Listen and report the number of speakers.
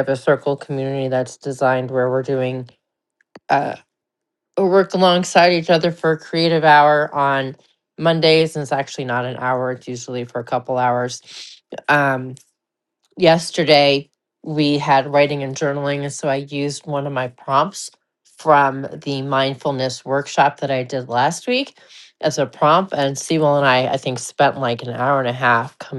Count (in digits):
1